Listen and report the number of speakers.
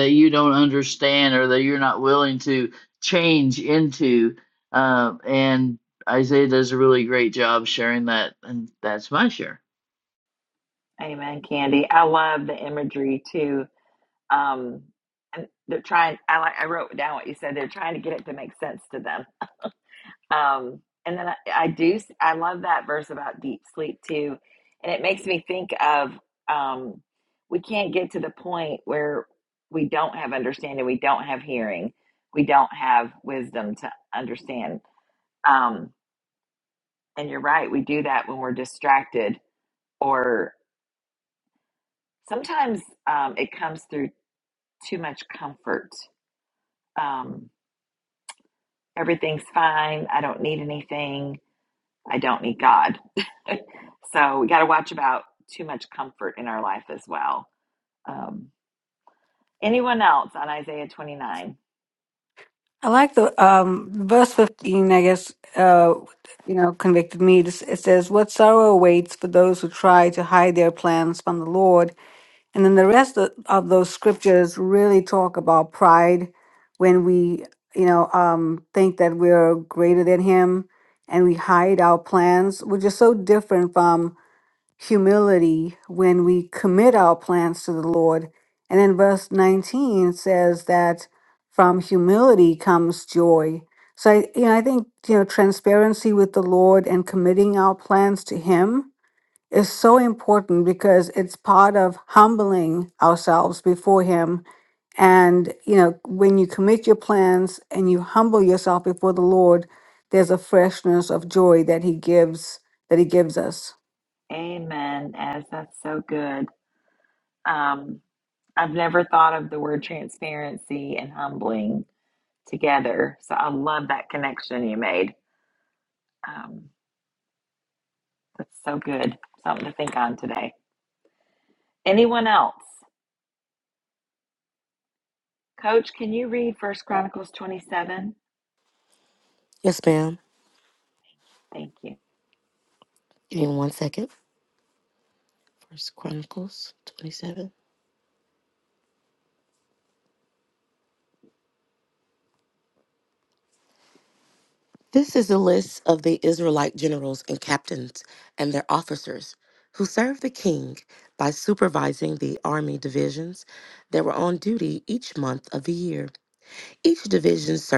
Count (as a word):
four